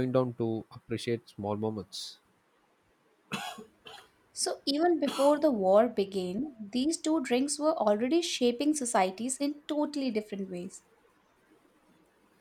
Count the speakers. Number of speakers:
two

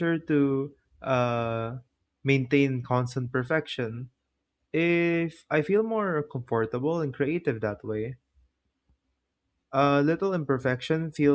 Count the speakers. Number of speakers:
one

